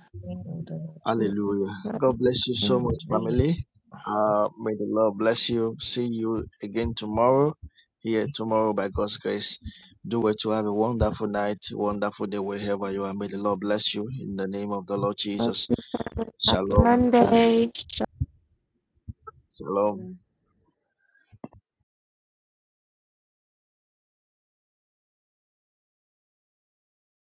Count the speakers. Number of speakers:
3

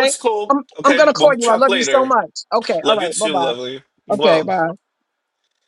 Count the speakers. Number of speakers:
2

